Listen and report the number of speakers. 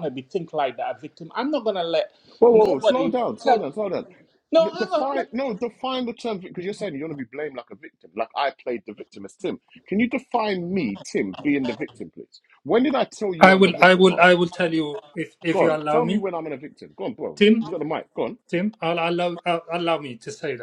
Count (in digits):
3